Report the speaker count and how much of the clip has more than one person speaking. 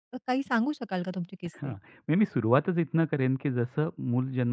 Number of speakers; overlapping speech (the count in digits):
2, about 4%